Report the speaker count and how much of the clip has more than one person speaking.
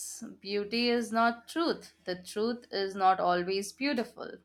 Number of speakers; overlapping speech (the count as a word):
one, no overlap